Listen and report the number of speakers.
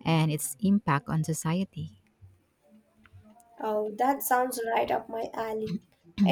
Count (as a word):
two